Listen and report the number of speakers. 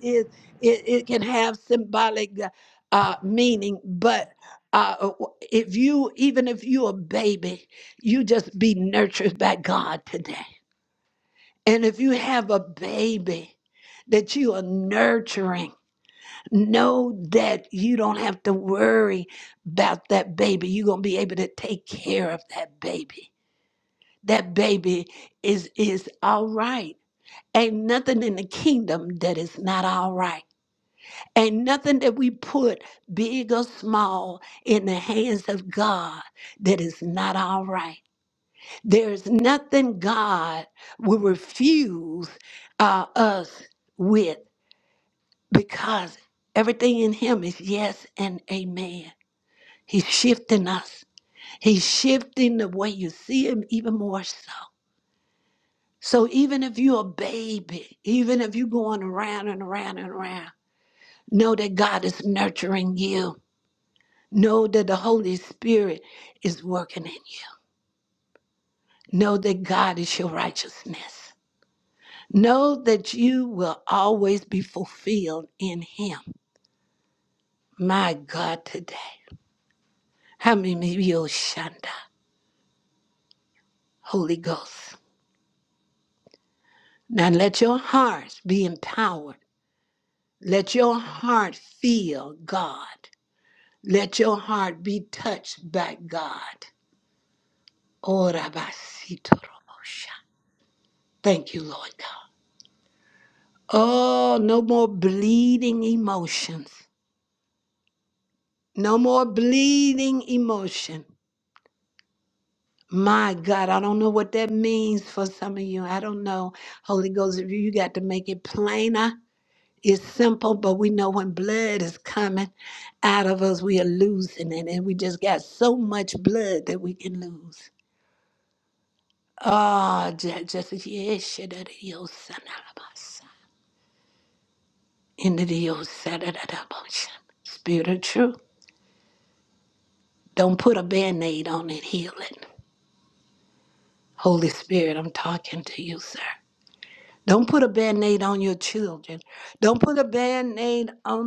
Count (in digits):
1